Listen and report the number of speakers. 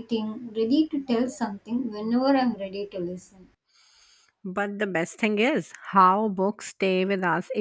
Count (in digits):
2